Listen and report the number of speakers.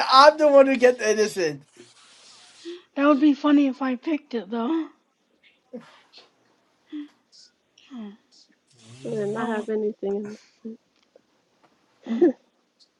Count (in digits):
3